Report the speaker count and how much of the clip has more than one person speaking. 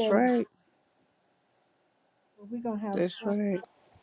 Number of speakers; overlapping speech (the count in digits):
2, about 18%